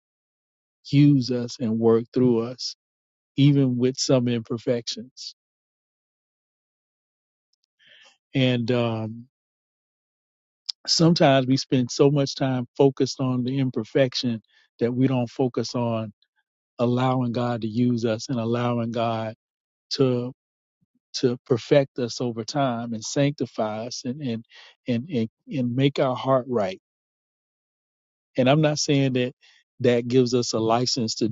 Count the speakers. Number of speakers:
1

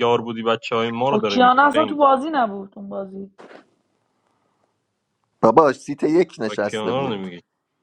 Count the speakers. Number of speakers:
3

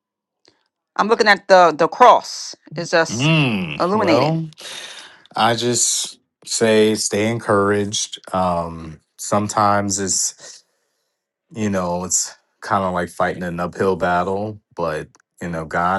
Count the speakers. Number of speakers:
2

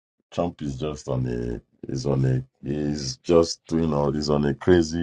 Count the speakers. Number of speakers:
1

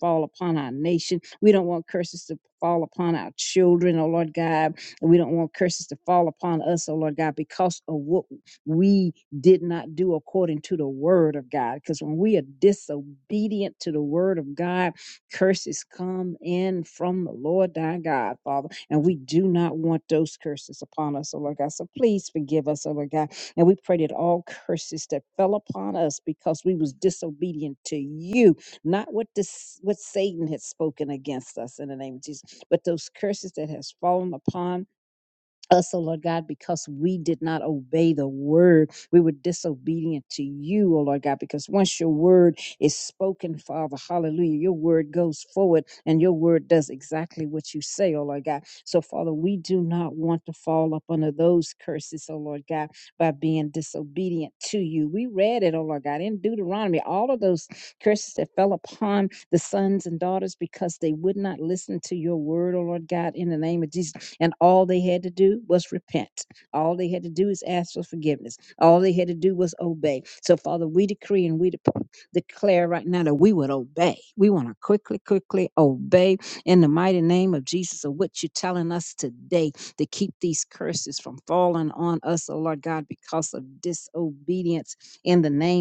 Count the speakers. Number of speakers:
1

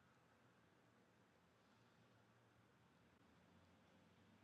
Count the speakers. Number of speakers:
0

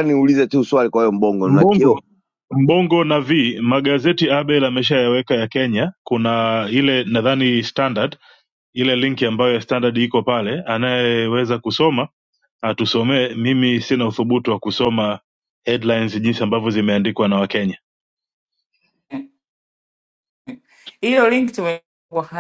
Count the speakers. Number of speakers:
3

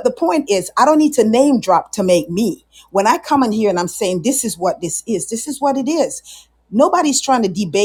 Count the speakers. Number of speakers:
1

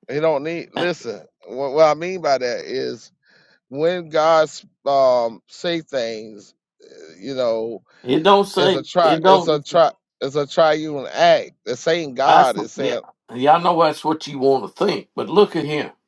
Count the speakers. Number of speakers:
2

